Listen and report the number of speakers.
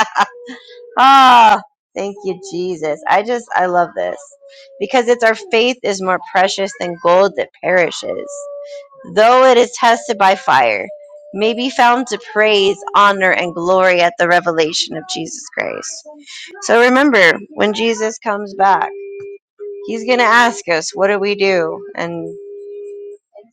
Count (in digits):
1